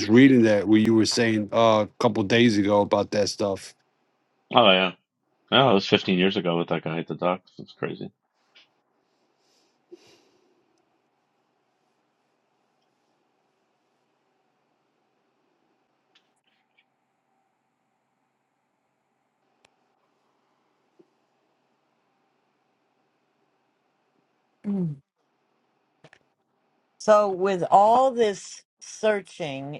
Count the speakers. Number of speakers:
three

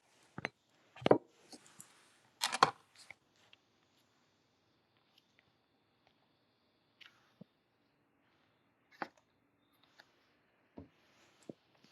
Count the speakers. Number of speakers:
zero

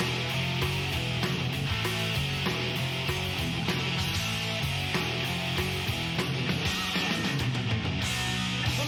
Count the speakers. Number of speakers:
zero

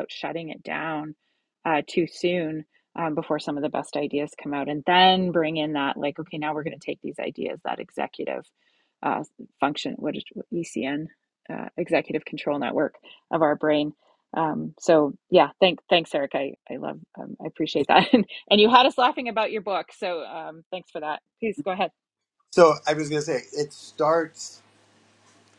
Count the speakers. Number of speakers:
two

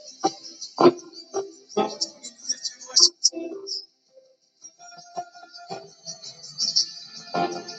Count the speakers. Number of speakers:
zero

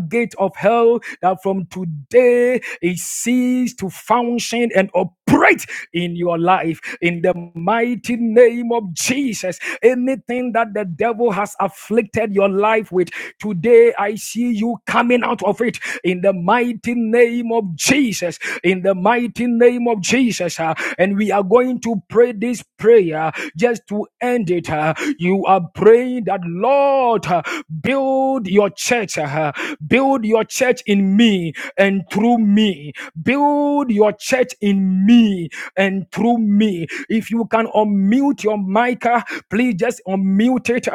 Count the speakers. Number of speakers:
one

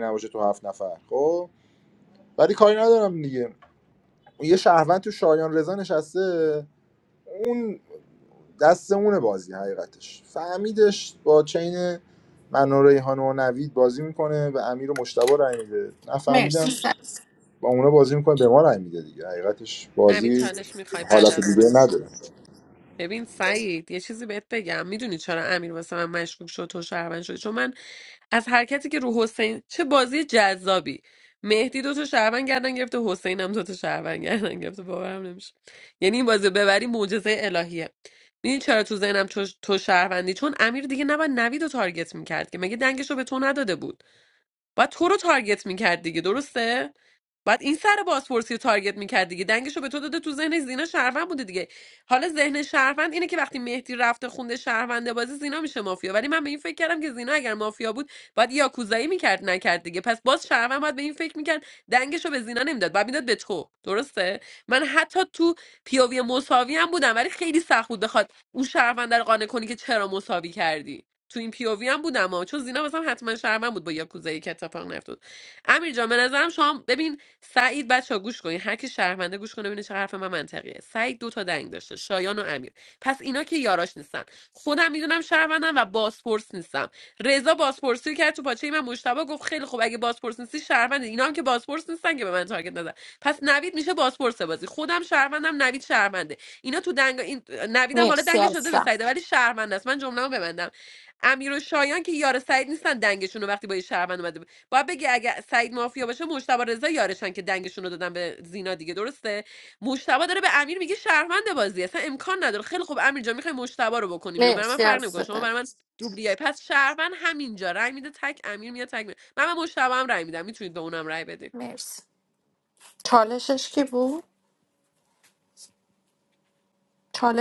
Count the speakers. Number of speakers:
three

